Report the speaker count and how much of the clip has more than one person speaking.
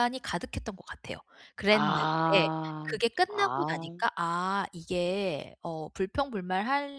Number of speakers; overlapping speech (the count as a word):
two, about 15%